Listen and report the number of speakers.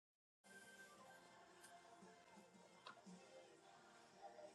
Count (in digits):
0